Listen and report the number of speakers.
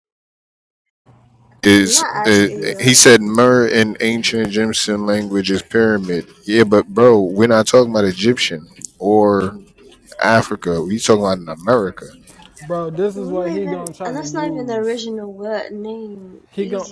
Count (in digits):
3